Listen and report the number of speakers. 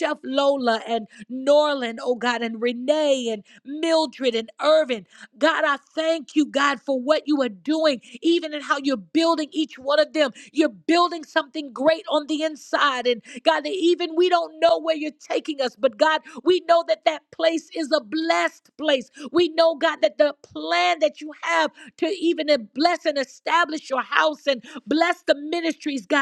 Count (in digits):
1